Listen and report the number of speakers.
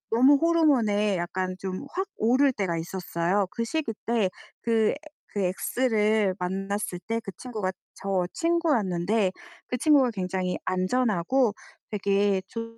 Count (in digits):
1